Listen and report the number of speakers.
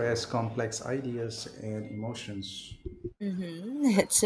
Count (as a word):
two